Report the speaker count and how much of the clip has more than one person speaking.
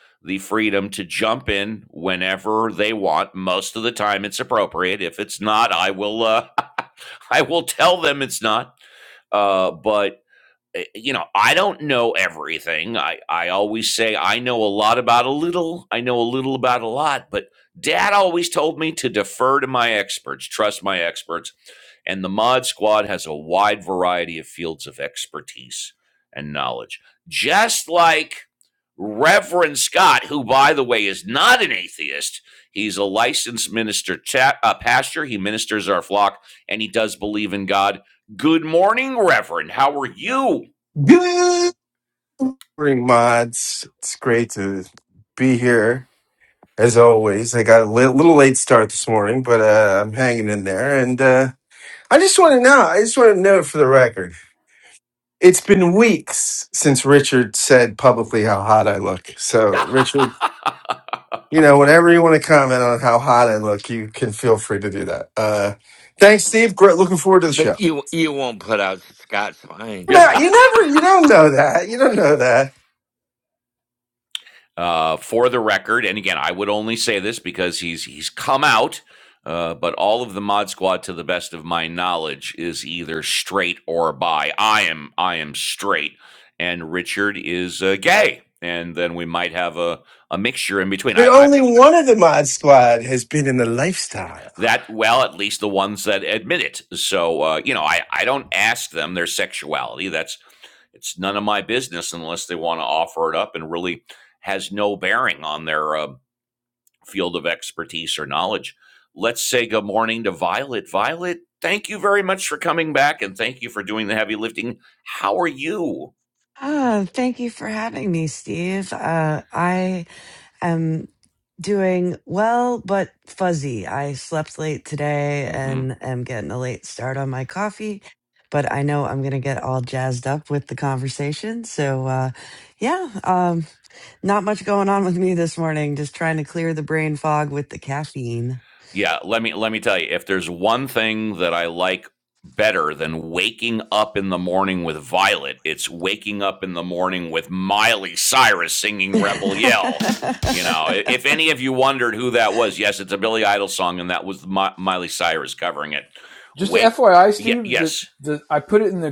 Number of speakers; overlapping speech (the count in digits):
5, about 1%